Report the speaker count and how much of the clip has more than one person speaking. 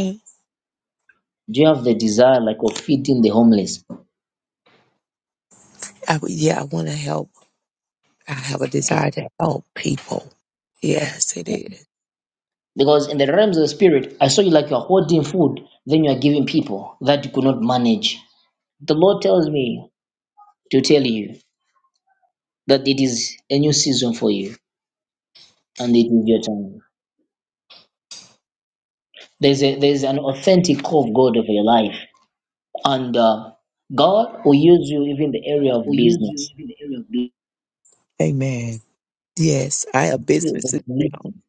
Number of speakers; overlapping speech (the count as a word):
three, about 4%